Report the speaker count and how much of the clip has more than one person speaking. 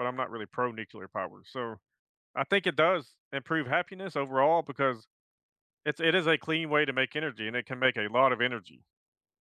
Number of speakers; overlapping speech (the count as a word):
one, no overlap